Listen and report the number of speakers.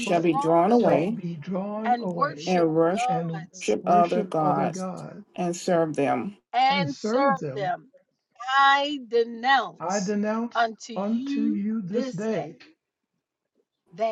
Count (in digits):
3